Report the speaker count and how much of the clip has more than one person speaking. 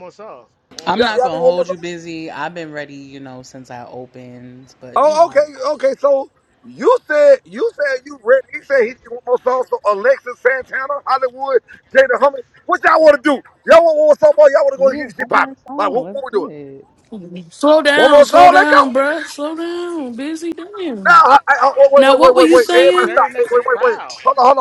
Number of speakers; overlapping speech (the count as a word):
four, about 24%